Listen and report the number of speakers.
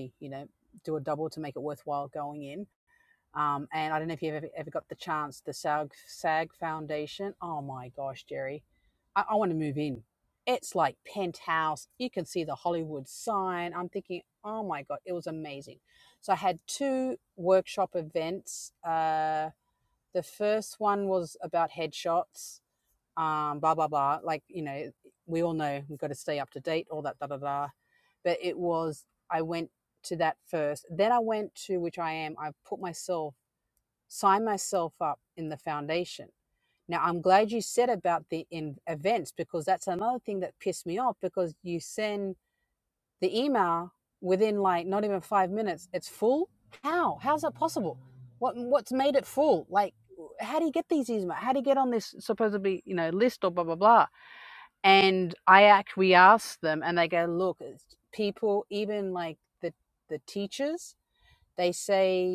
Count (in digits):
1